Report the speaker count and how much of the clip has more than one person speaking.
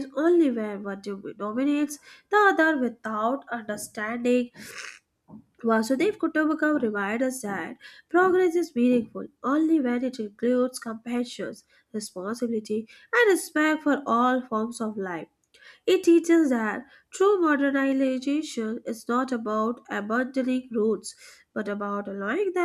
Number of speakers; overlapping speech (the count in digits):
1, no overlap